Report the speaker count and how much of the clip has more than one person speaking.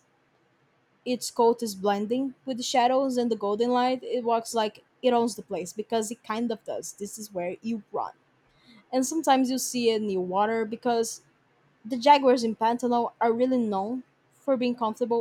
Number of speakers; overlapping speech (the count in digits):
1, no overlap